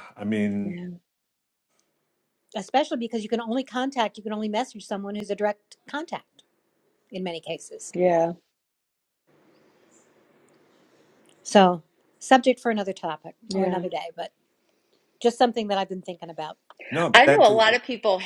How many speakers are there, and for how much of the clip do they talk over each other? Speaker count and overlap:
3, about 6%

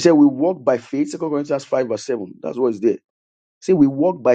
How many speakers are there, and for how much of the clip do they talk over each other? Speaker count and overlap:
1, no overlap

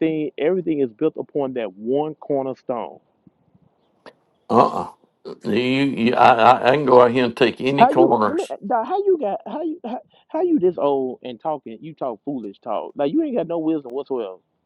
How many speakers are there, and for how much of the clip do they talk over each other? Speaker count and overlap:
2, about 5%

